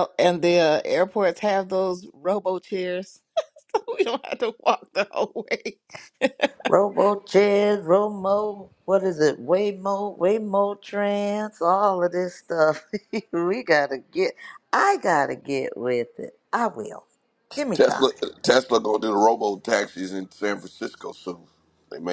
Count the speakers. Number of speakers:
3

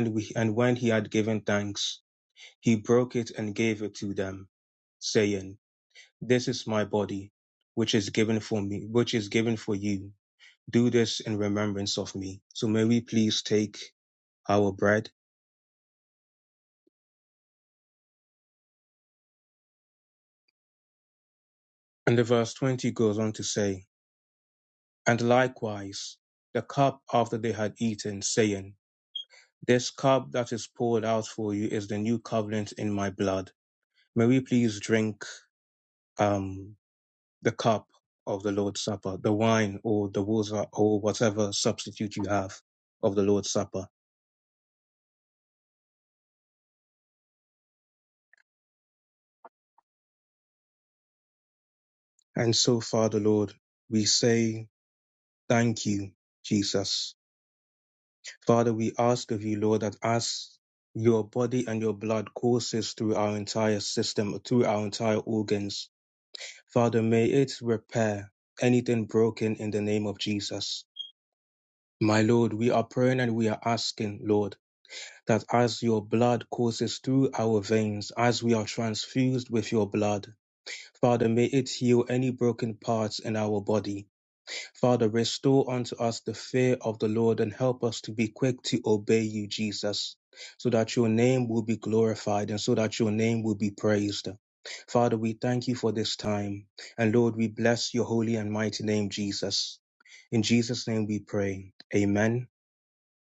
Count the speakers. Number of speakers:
1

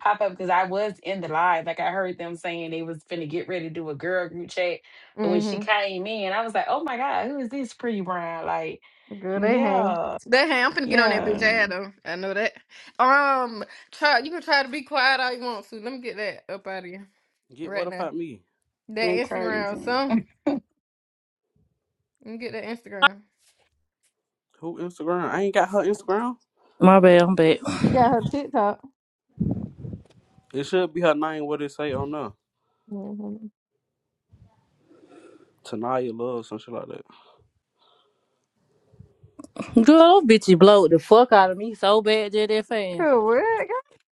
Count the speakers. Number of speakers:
4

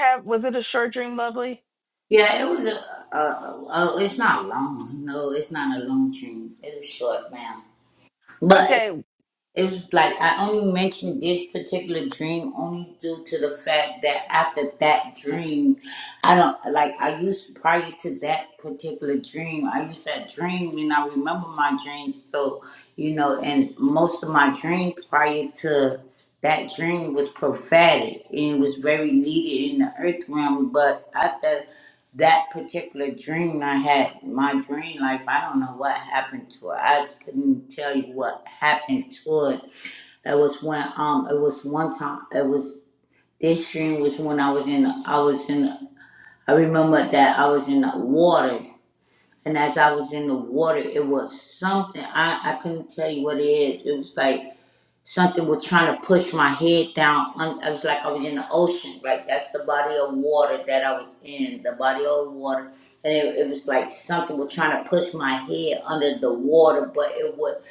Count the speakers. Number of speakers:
2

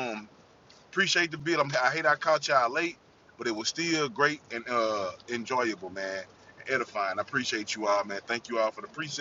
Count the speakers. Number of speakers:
1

